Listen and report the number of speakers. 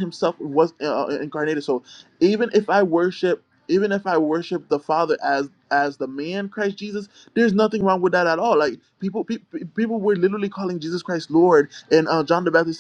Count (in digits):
1